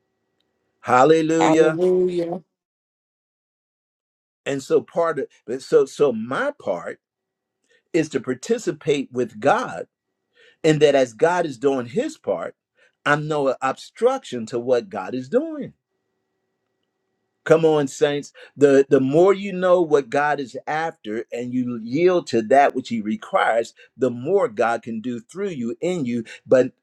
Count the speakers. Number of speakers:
2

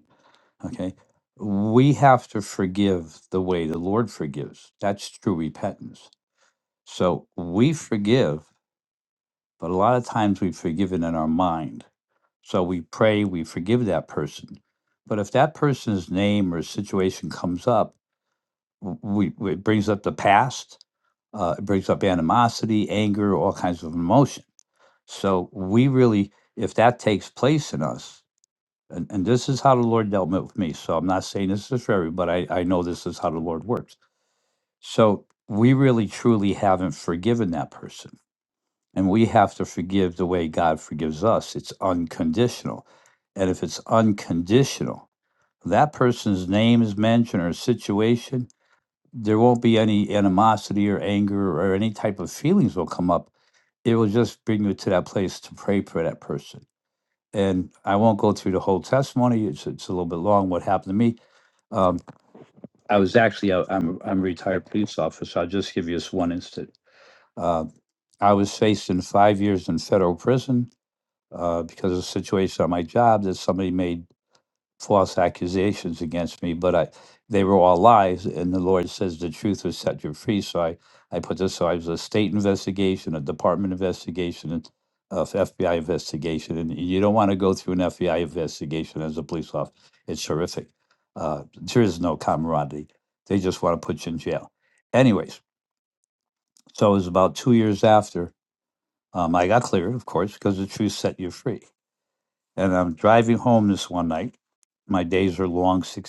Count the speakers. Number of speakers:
1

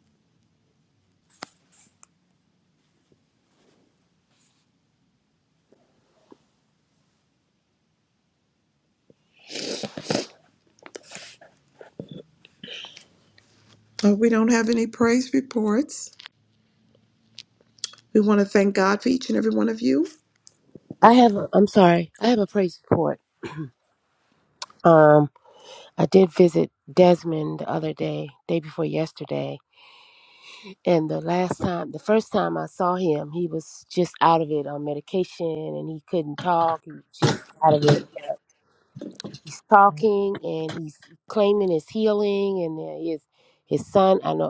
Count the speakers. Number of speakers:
2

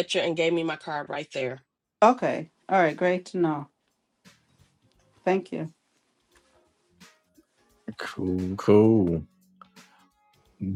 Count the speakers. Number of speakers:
3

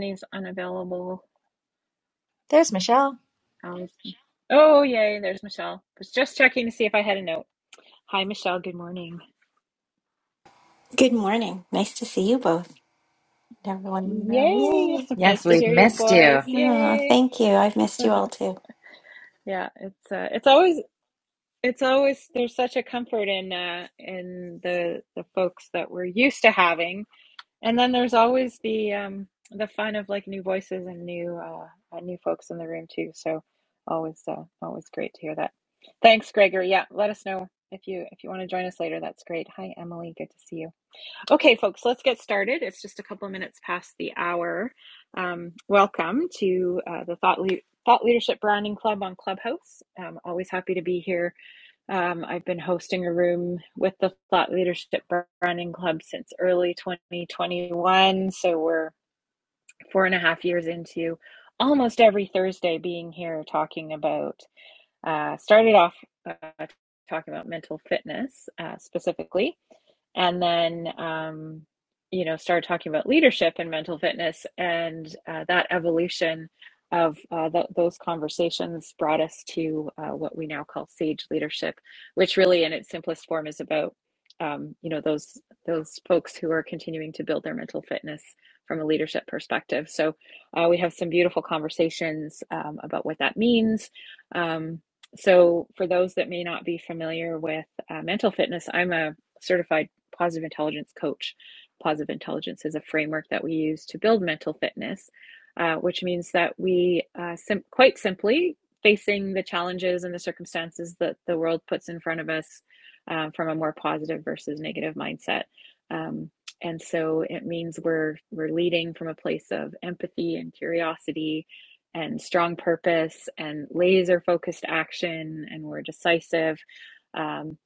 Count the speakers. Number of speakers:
3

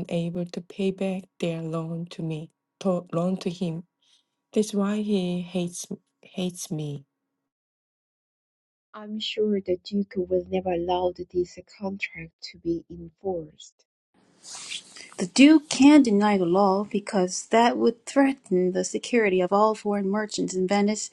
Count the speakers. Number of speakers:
3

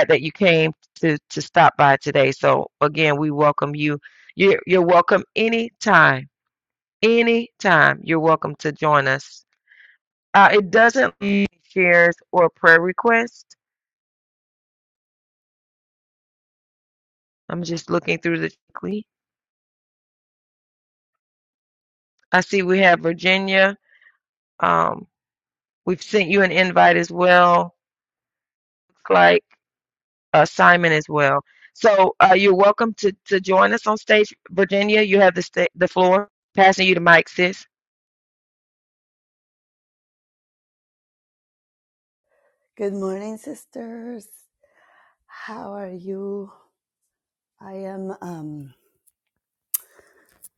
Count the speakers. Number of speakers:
2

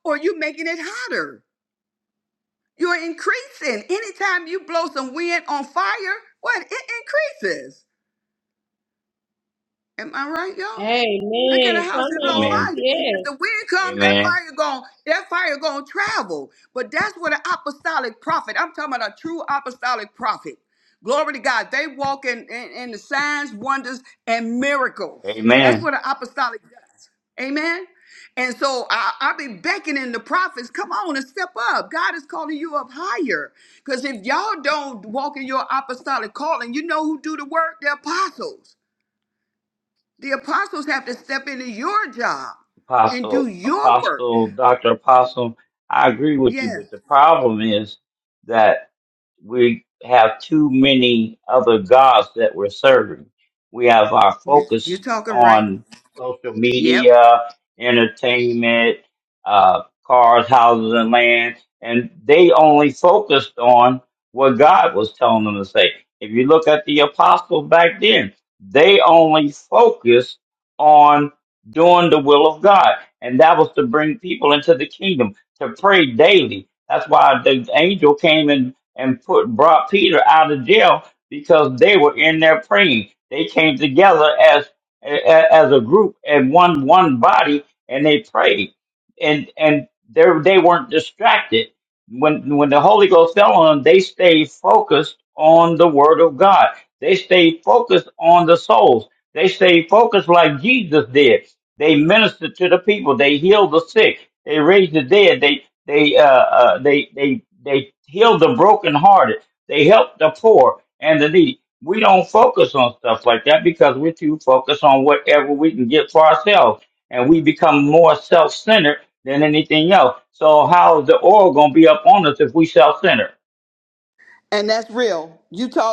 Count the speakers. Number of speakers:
3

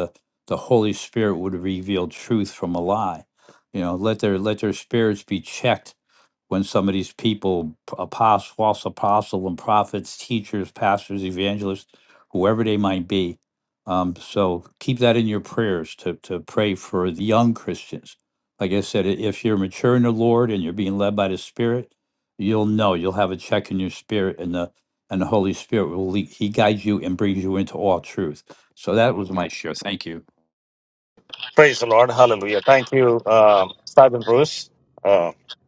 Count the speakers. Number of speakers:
2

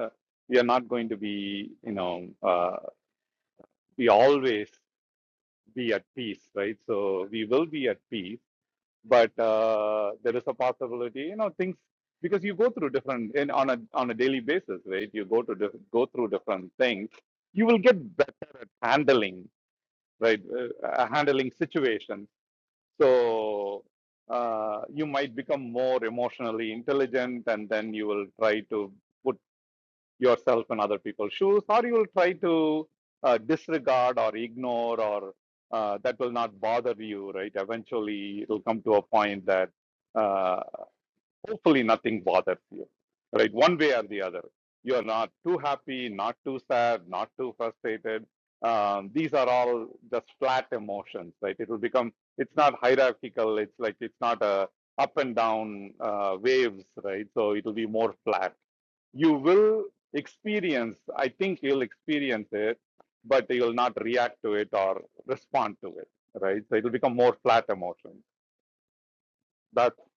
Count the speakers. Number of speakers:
1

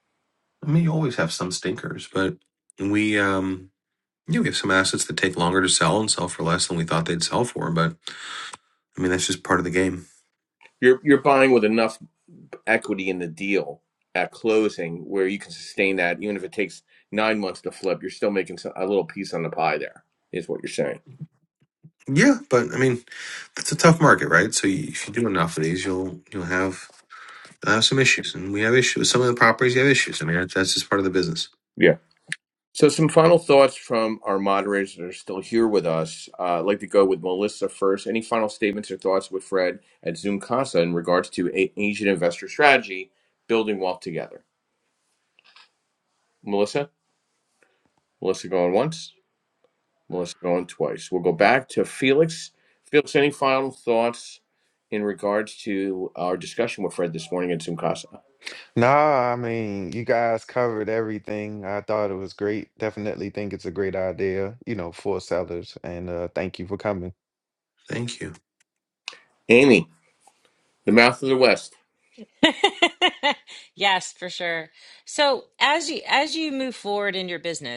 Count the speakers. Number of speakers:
4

